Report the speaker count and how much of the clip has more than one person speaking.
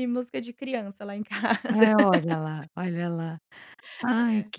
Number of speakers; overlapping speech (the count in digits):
2, about 7%